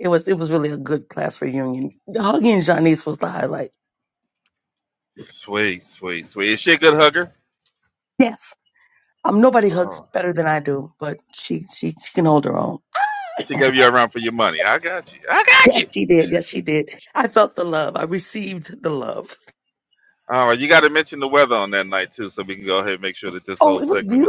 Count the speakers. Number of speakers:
2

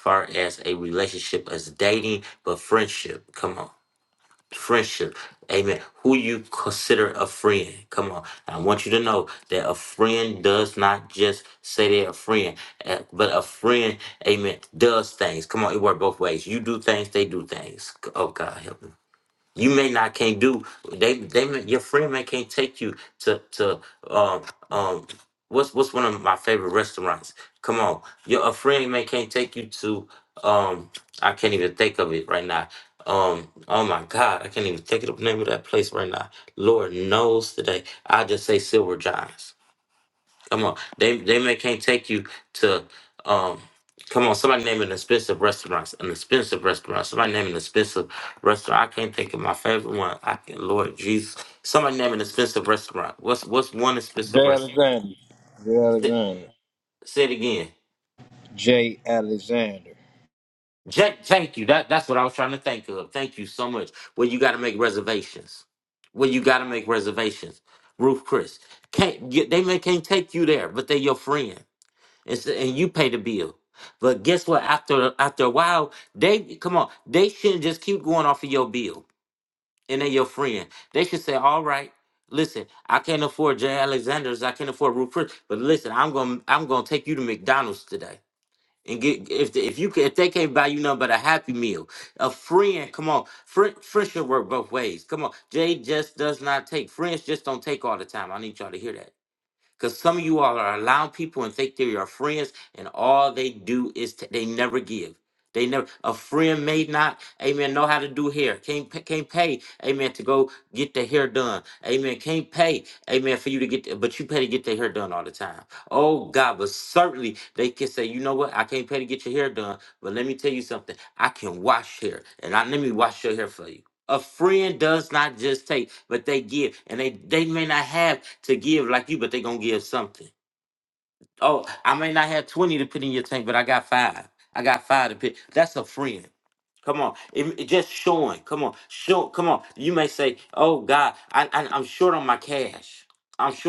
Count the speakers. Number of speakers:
2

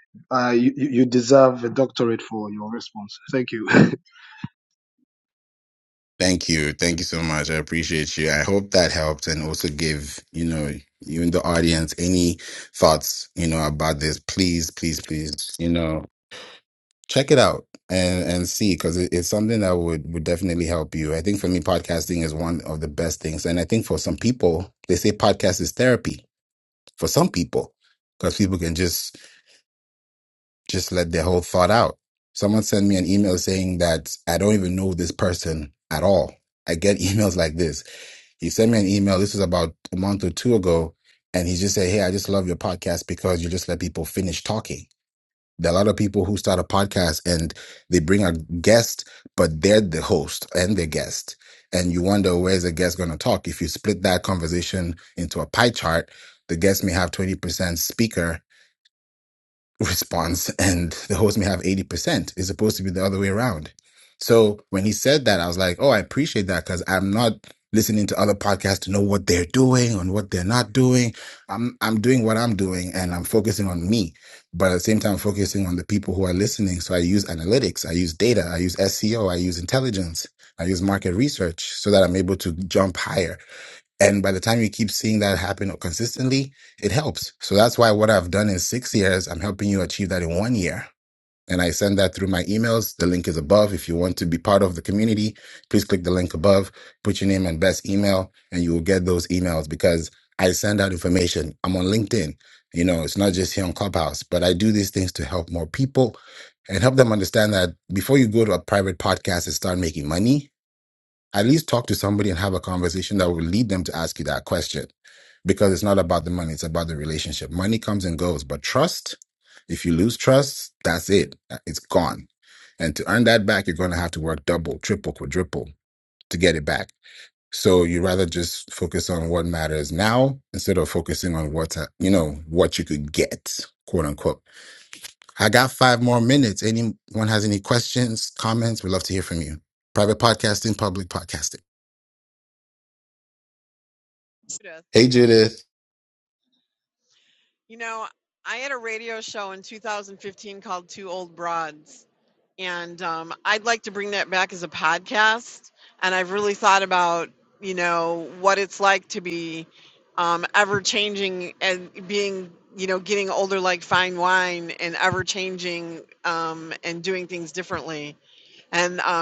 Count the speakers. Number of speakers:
3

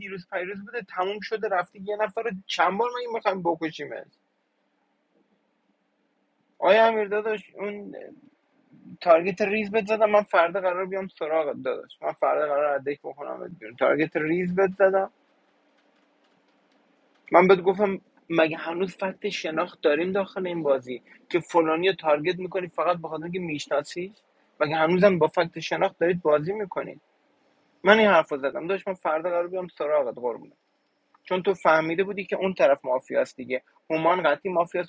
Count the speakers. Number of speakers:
1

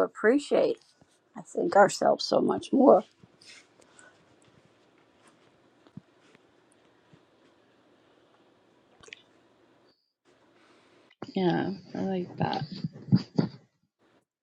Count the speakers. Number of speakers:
2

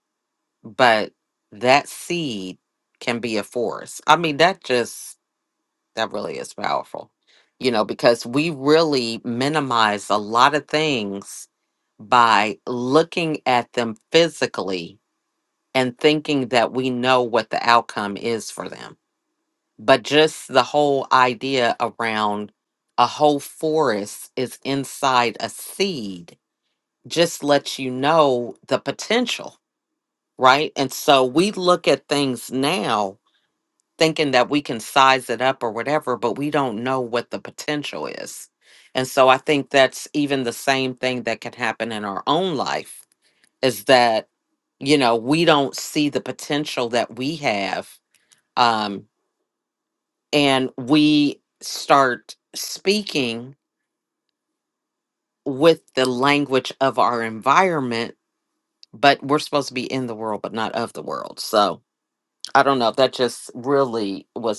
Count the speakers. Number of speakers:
1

